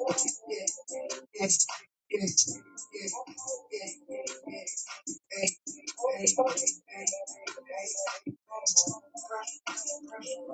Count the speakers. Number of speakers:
0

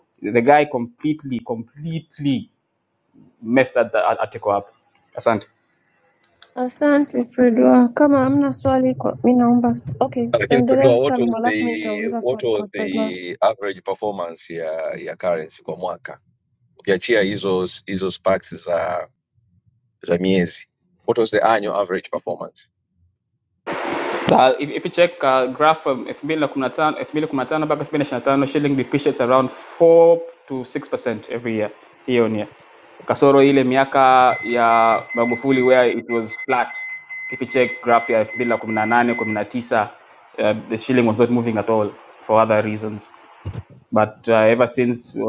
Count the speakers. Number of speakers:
3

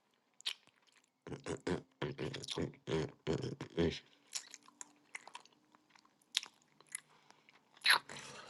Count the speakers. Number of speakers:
0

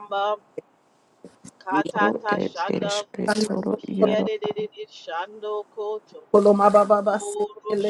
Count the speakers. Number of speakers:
3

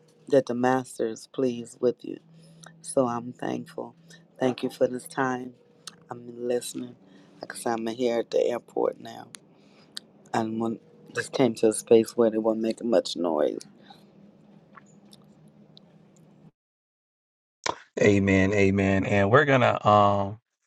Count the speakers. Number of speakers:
2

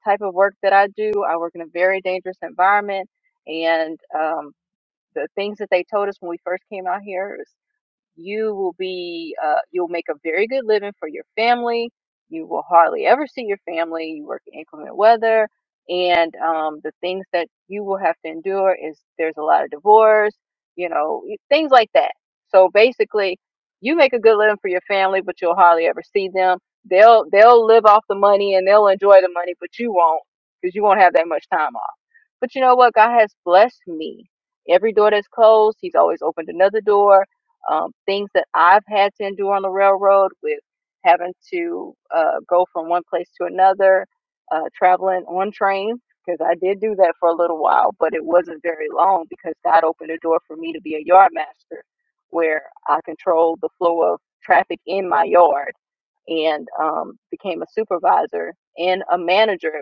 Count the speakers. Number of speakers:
1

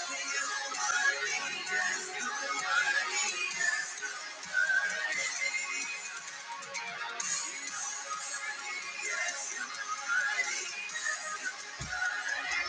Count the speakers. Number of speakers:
0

